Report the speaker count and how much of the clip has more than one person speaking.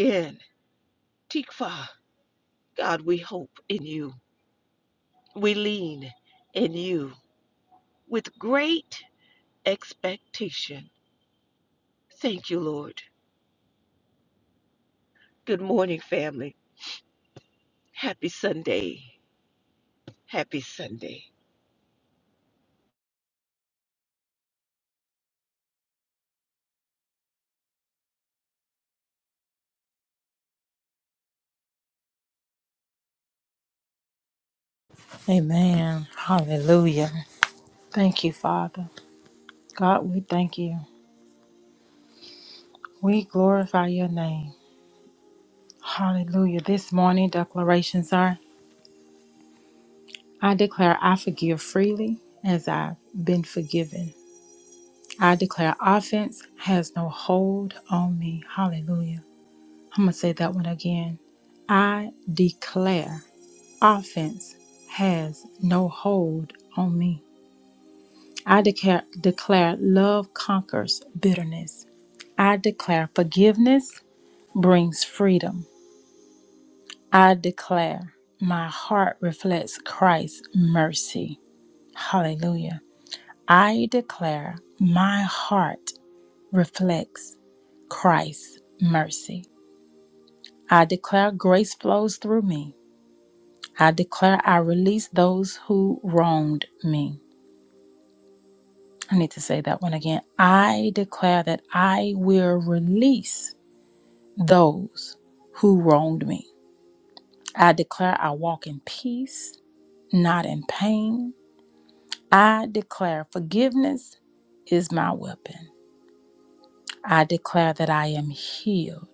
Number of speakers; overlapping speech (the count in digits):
2, no overlap